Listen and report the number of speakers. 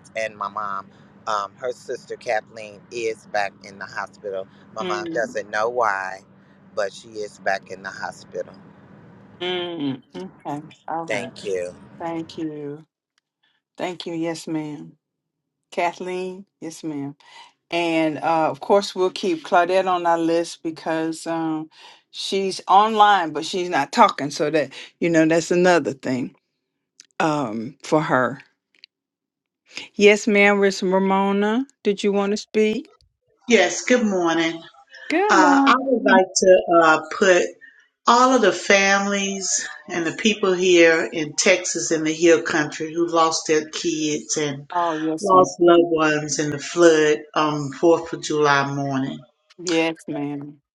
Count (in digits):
3